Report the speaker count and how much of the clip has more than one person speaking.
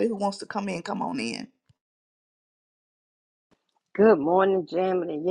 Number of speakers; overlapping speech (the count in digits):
2, no overlap